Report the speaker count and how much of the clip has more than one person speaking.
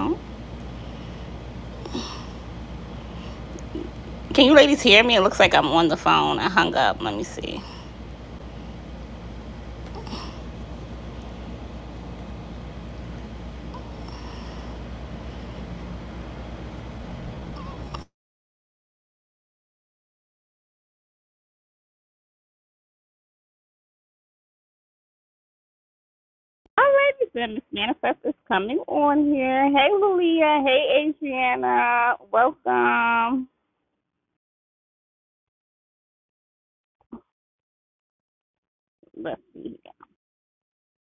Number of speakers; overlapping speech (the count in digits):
1, no overlap